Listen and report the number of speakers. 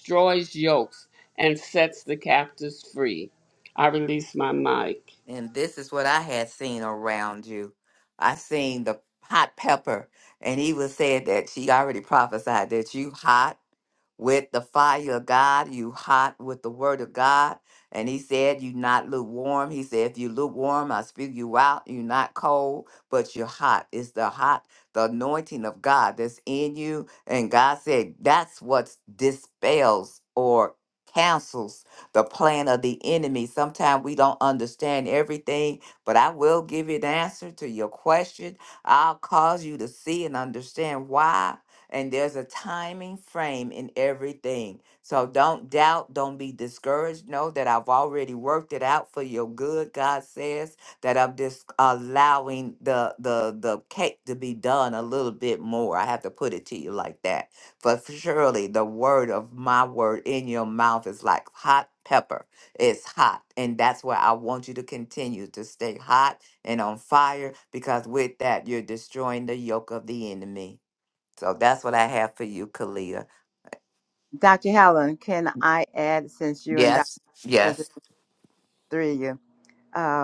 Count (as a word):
three